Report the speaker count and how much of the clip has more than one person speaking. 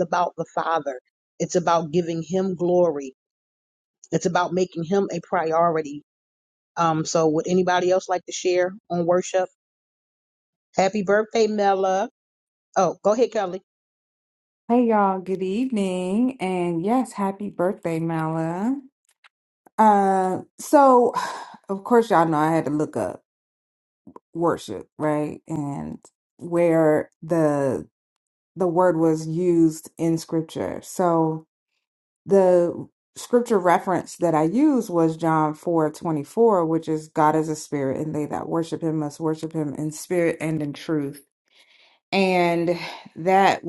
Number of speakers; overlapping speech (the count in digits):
2, no overlap